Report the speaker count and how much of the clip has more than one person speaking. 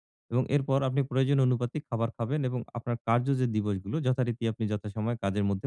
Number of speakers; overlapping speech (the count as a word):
one, no overlap